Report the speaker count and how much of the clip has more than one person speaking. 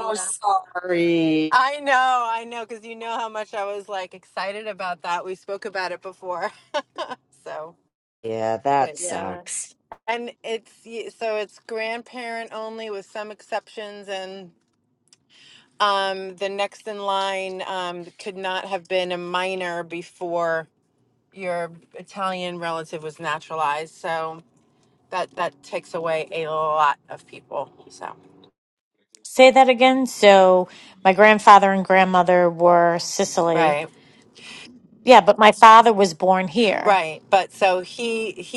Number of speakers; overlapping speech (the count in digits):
3, about 3%